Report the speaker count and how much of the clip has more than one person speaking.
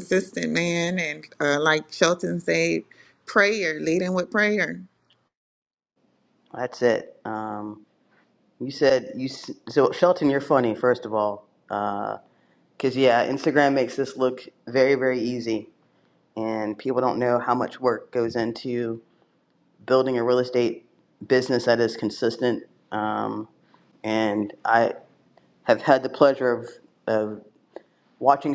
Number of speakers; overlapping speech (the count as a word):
two, no overlap